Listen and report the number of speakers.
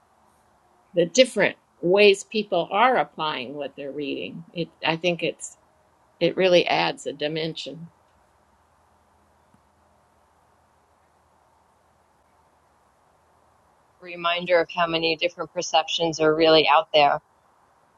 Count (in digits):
2